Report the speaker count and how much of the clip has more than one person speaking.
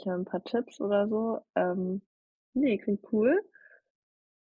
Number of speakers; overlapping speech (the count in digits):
1, no overlap